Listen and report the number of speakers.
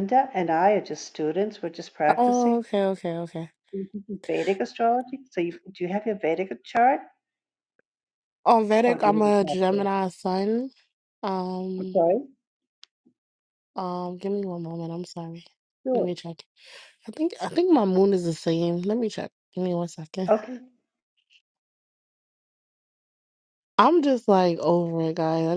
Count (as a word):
two